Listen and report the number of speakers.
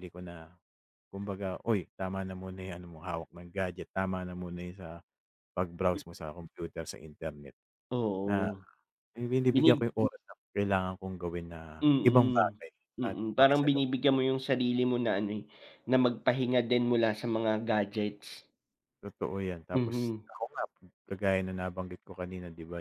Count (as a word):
two